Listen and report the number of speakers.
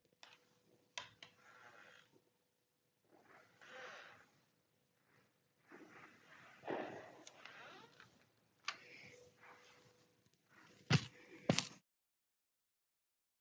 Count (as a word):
zero